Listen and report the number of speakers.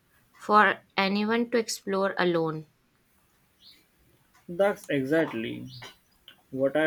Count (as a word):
two